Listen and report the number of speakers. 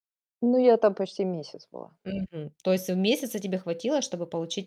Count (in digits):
2